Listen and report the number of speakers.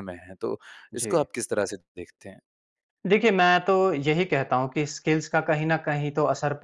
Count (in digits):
2